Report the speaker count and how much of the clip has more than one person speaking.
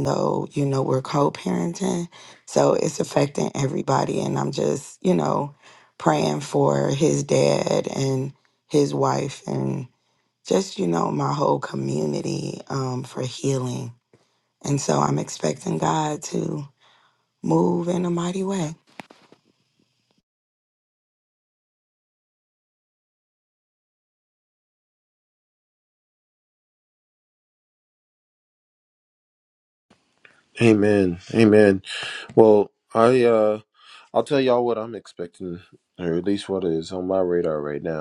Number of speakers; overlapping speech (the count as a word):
two, no overlap